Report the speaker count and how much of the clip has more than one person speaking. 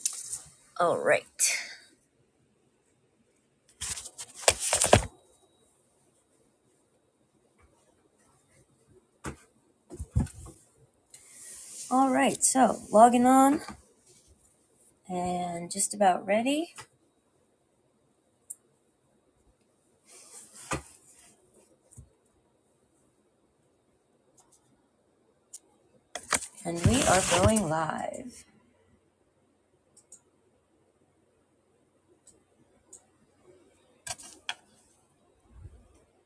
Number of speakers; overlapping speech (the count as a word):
one, no overlap